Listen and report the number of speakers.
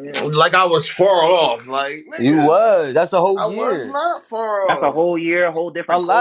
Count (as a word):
three